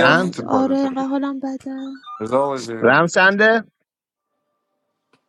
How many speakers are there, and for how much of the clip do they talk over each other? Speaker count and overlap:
three, about 20%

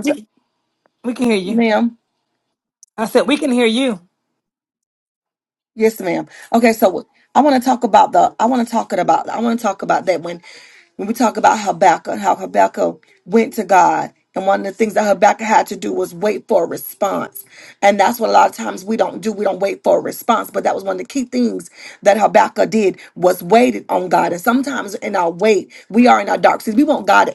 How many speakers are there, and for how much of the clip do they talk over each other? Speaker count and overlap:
two, about 1%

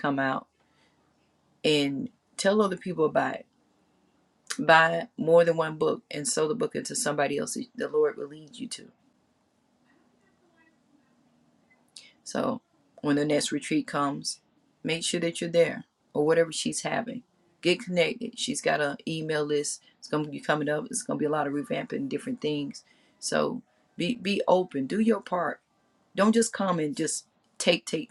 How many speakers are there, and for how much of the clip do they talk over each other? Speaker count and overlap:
one, no overlap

